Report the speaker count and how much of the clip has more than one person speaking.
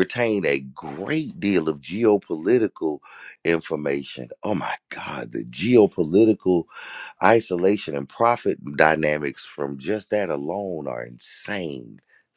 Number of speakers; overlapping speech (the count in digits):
1, no overlap